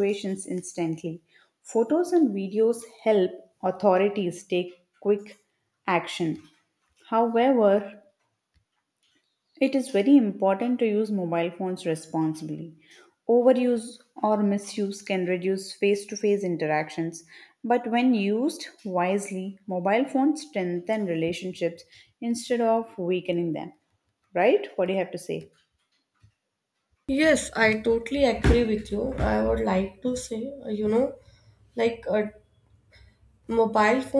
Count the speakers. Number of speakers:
2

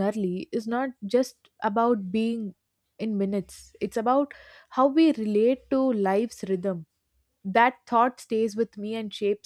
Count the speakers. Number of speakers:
1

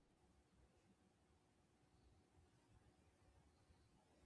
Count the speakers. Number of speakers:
0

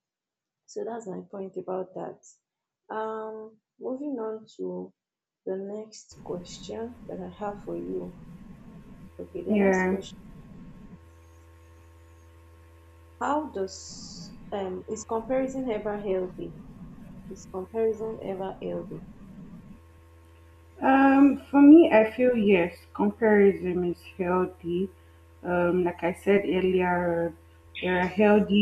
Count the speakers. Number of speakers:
2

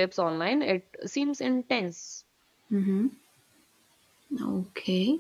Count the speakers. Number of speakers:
2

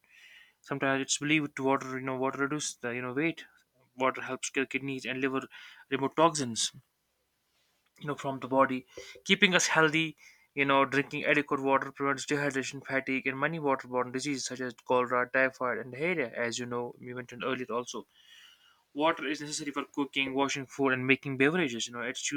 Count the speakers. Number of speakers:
1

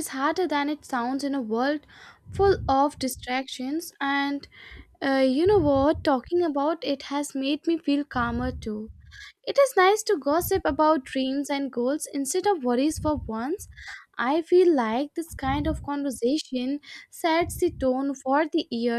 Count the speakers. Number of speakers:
1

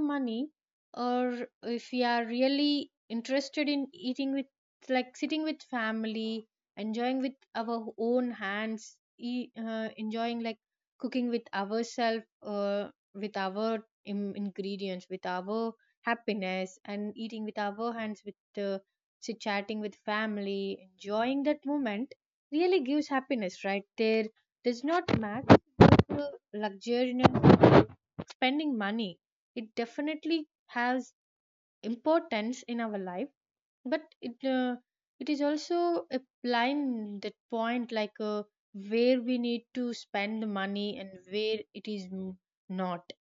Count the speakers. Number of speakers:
1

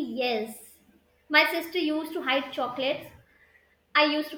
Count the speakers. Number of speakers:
1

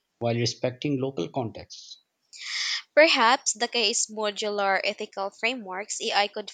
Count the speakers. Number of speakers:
2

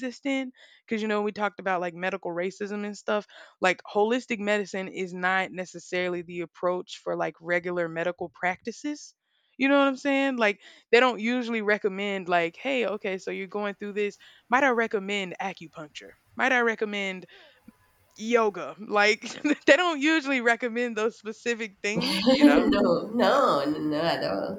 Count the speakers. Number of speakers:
2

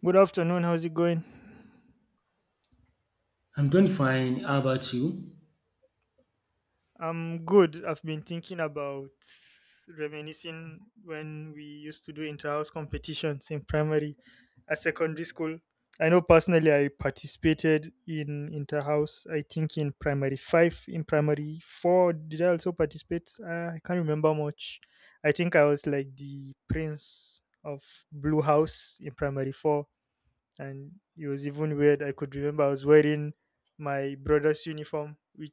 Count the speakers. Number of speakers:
2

